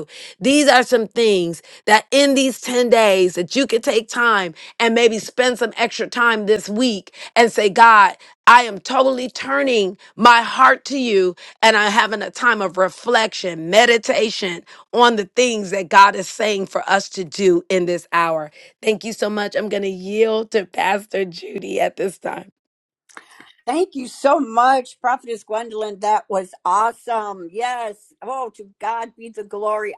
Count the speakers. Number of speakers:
2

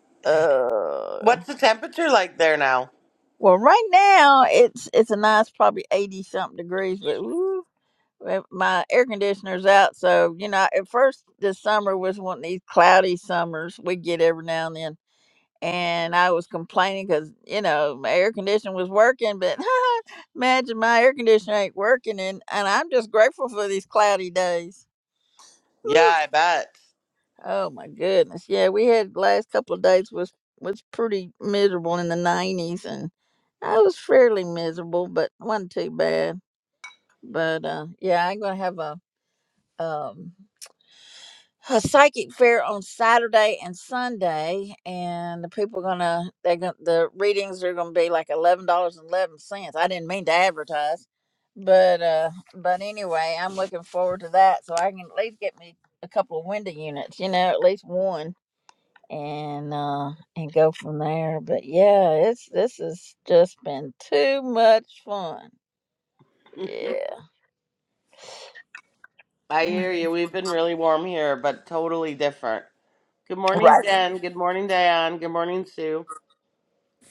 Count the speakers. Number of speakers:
2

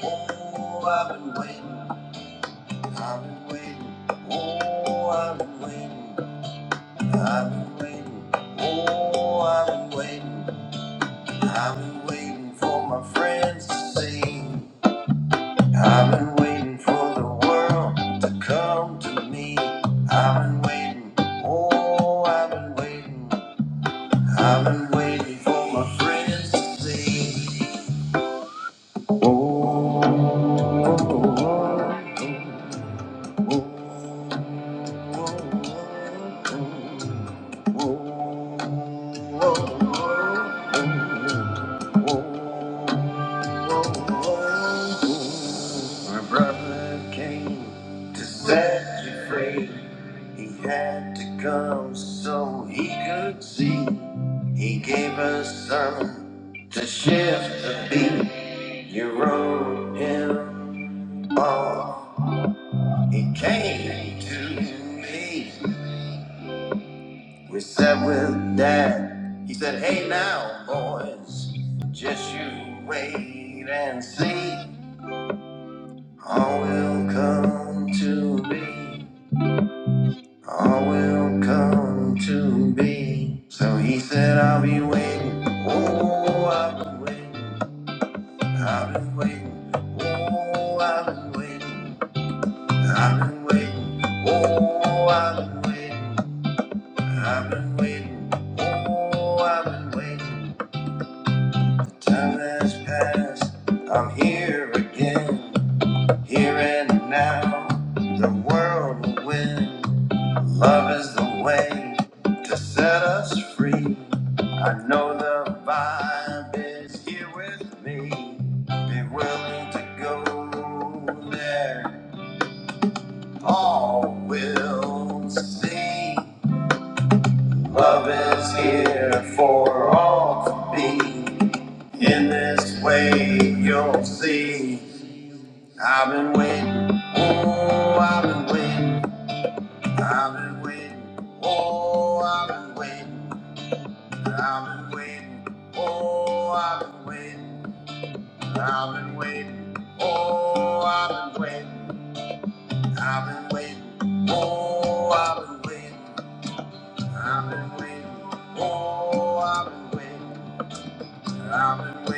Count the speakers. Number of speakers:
1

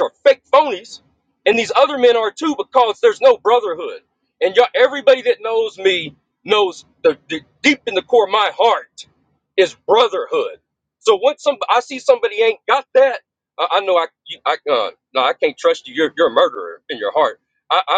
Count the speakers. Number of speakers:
1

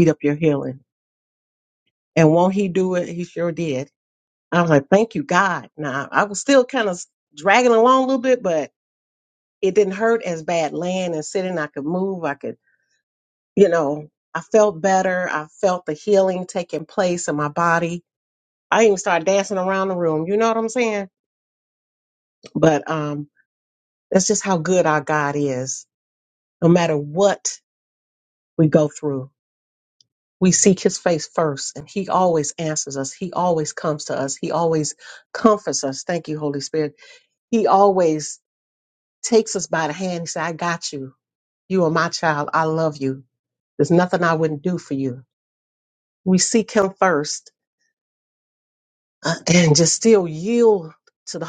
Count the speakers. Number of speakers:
1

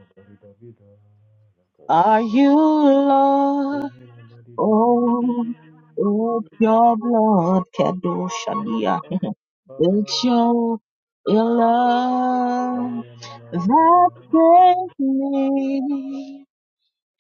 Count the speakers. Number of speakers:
2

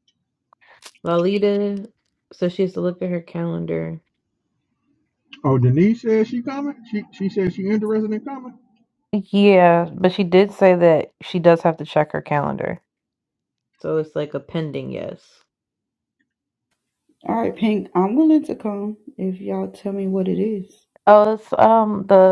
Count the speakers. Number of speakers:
3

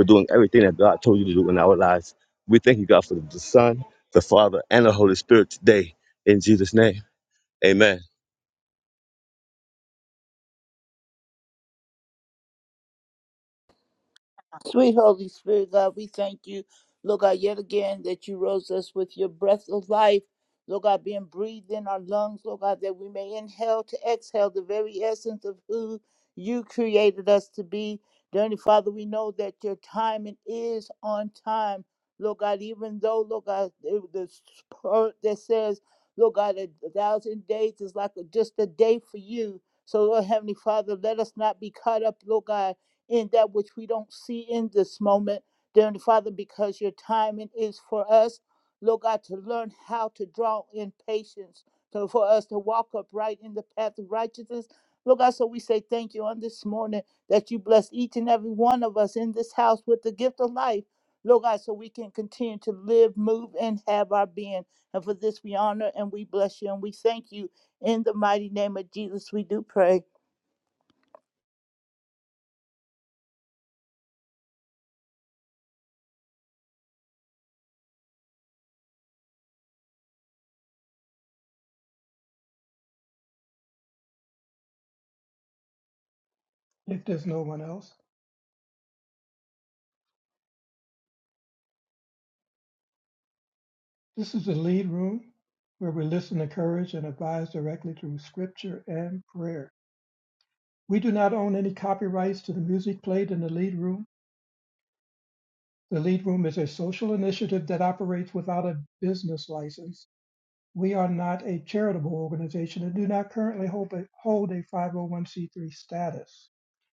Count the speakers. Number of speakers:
3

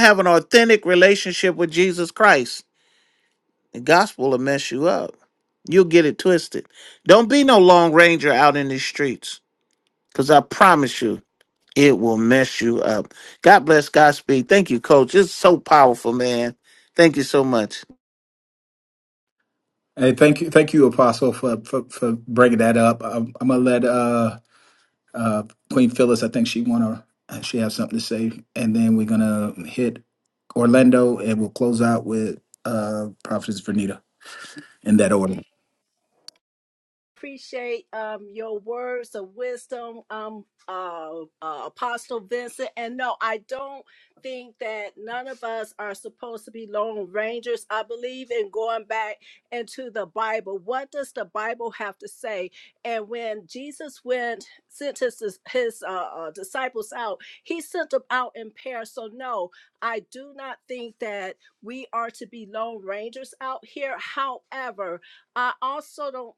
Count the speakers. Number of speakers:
3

